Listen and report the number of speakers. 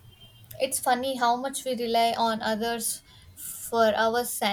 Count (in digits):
1